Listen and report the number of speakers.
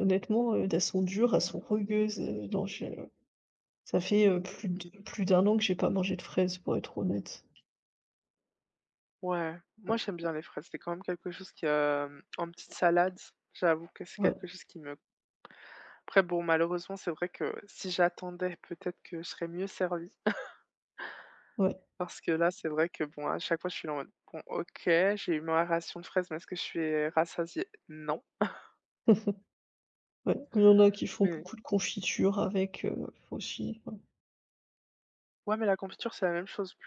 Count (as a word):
two